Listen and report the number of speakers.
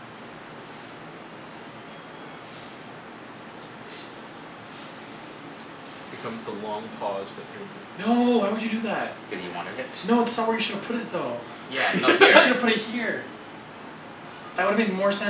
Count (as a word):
three